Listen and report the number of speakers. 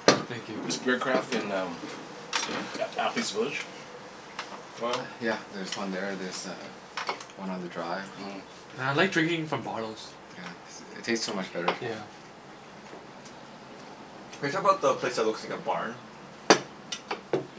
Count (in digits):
4